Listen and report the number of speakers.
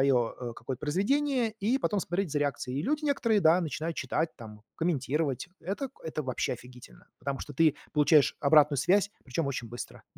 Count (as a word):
one